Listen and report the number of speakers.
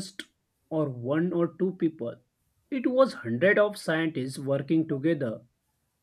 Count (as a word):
one